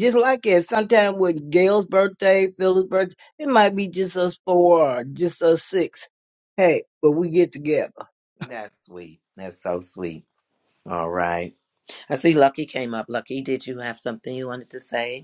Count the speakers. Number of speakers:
two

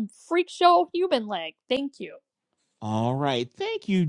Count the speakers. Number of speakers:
two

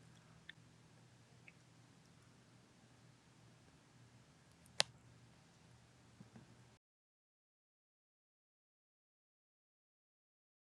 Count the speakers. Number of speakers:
zero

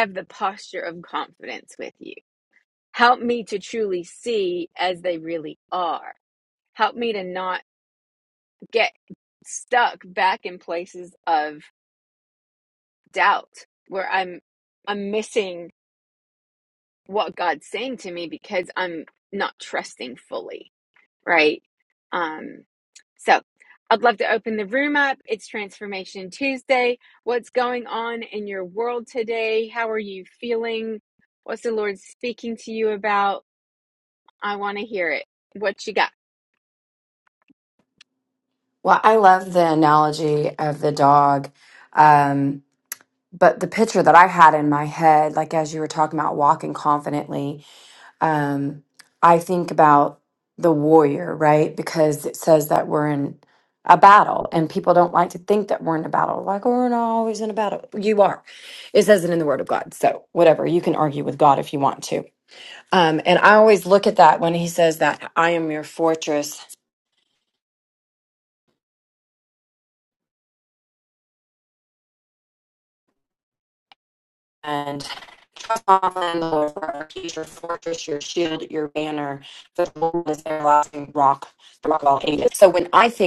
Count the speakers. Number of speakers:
two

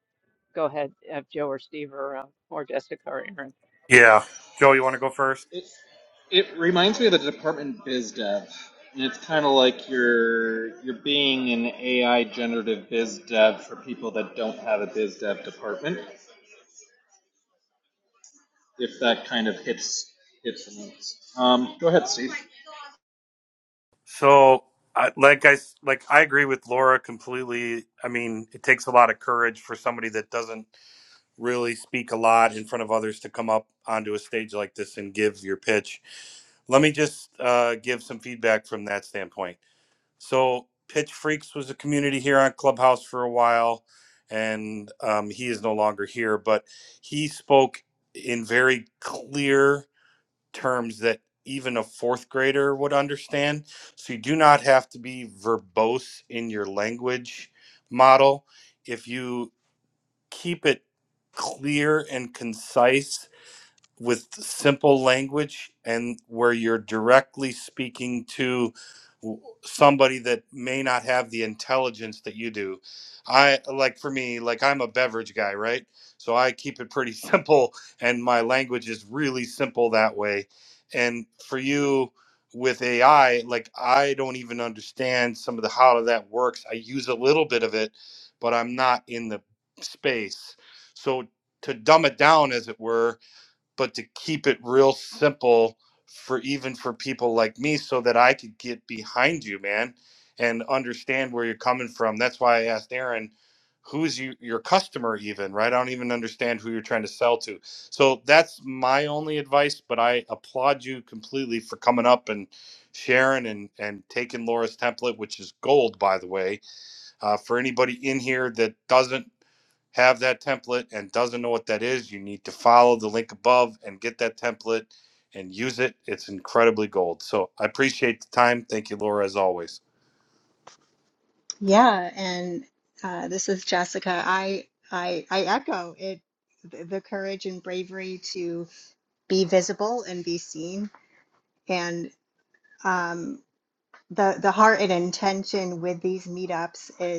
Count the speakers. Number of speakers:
four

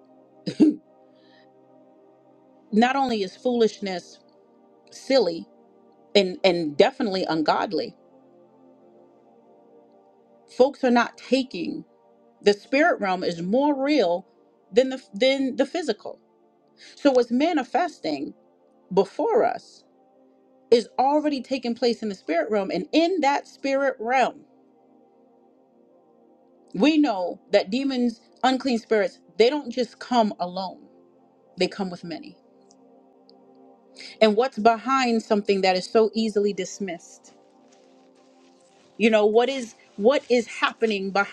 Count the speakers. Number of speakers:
one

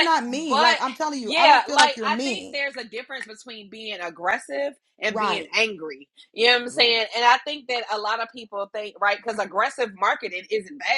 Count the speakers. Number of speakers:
two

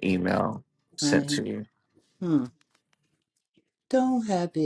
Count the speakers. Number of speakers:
two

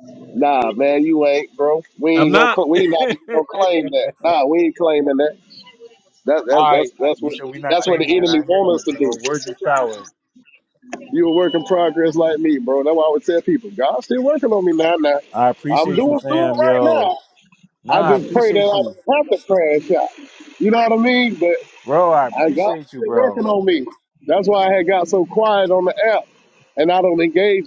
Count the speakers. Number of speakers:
two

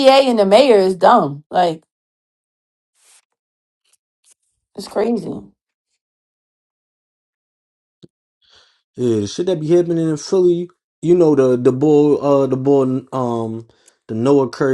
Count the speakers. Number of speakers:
two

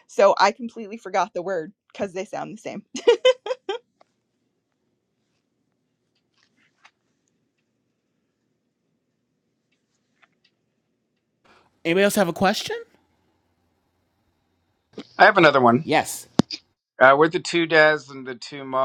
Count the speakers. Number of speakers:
three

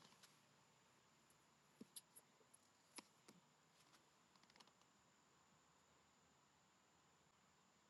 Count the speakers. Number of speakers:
zero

